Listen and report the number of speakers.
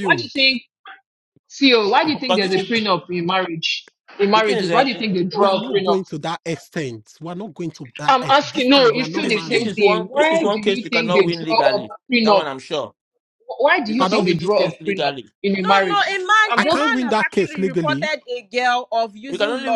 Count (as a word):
four